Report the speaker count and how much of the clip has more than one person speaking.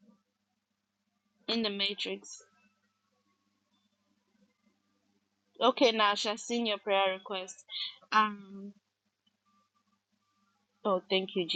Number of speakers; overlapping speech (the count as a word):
one, no overlap